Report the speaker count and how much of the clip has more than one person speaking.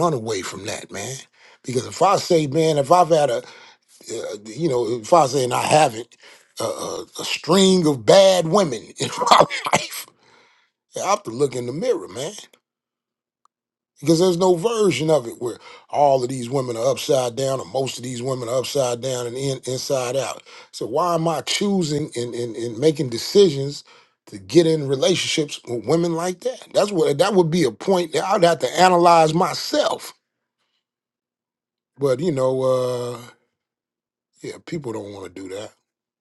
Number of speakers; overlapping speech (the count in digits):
1, no overlap